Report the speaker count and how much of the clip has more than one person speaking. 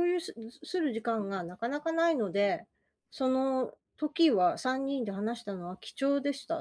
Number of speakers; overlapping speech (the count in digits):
1, no overlap